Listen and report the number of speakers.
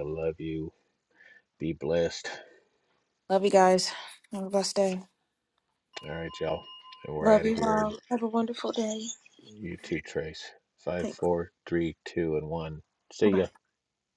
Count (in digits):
3